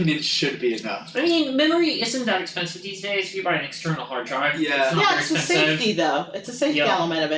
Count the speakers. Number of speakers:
3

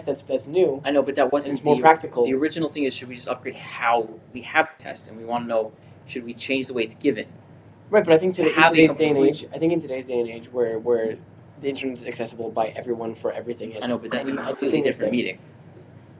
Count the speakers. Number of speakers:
2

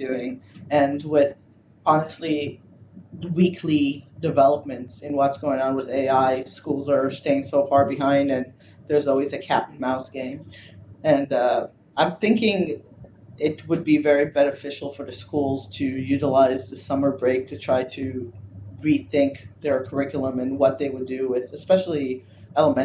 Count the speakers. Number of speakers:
1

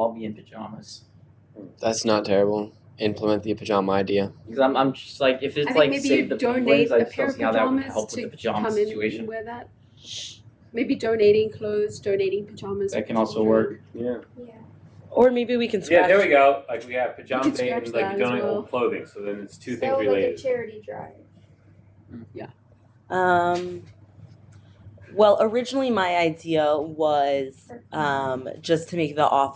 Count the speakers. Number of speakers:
6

